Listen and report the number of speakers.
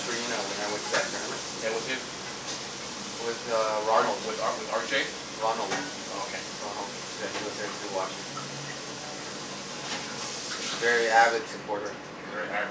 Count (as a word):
two